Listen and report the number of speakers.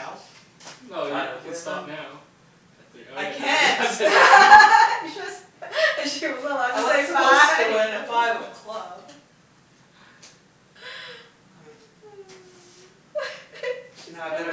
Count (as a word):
three